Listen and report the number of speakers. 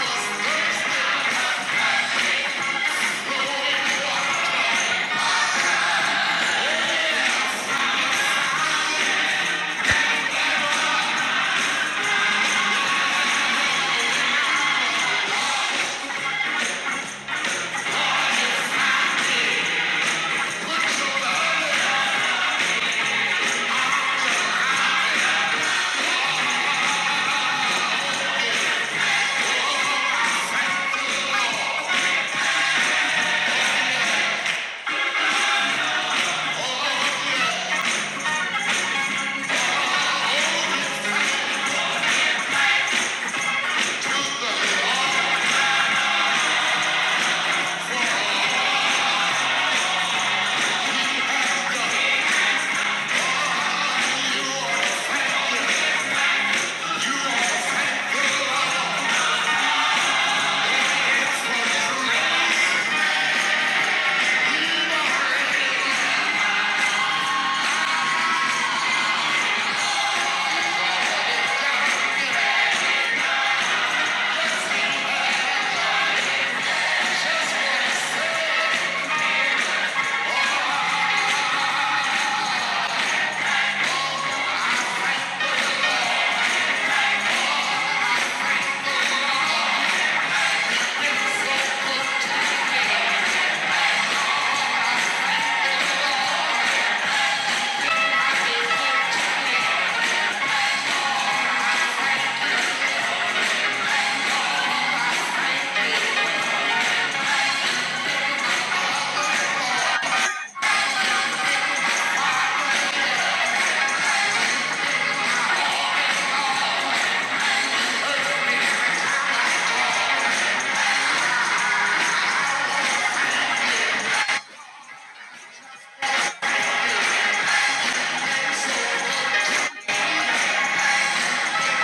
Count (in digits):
0